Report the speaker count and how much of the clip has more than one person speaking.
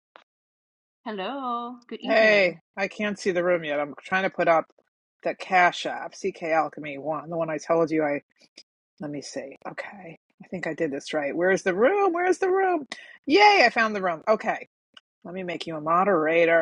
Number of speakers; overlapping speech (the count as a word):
two, about 3%